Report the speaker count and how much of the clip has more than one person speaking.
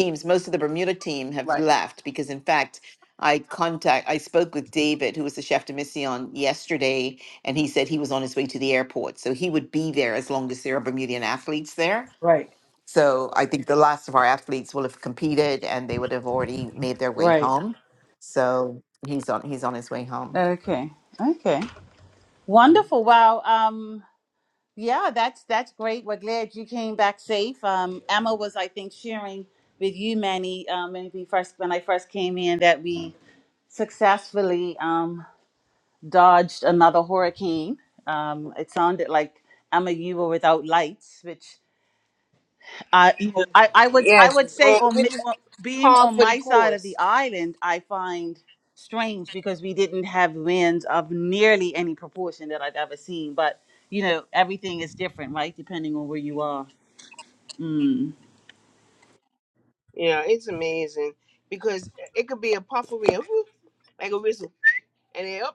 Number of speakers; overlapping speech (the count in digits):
3, about 5%